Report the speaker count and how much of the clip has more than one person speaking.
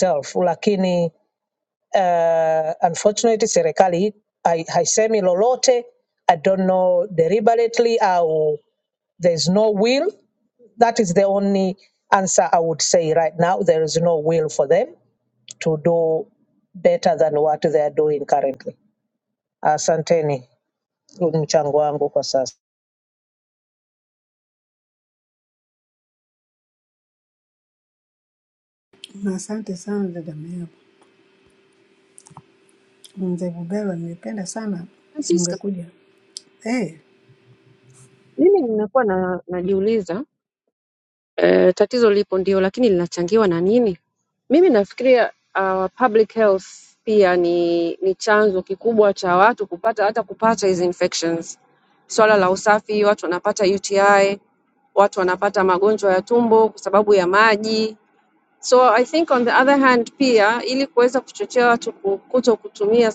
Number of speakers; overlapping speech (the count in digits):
3, under 1%